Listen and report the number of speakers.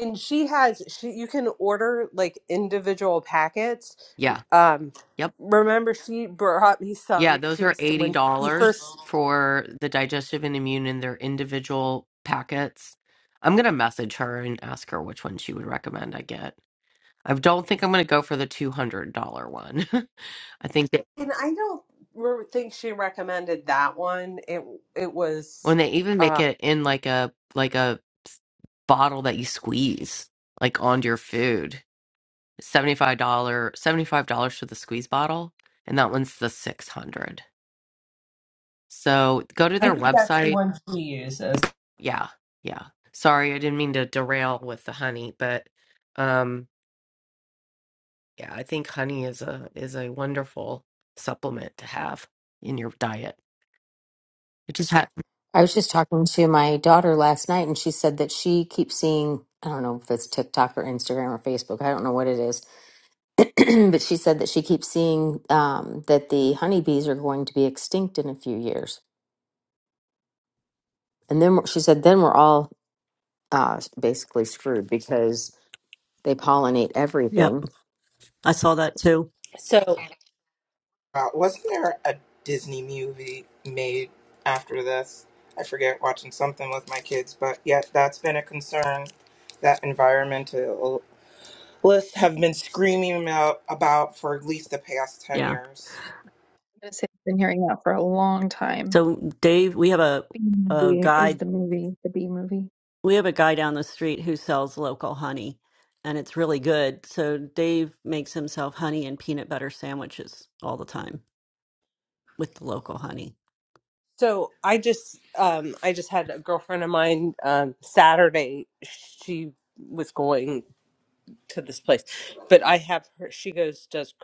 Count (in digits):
6